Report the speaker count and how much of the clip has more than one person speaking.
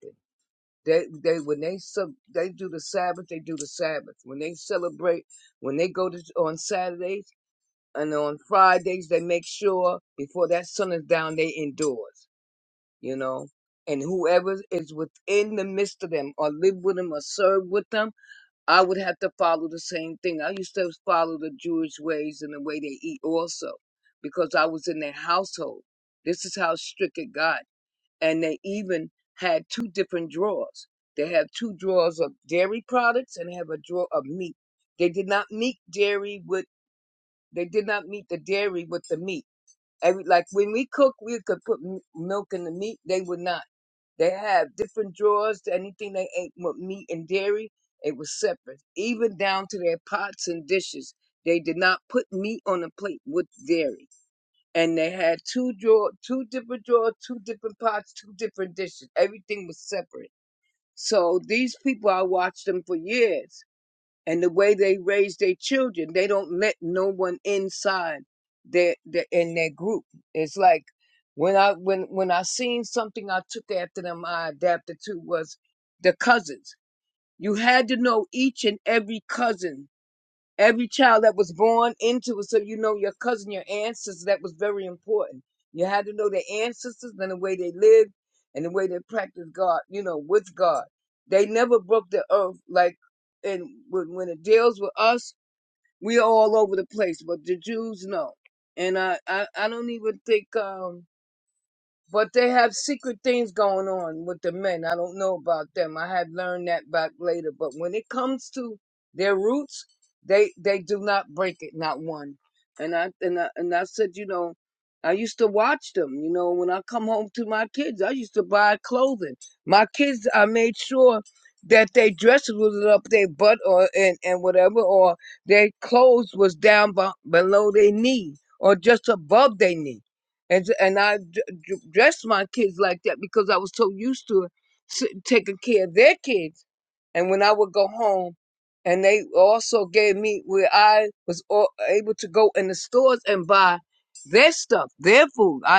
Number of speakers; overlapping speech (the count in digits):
1, no overlap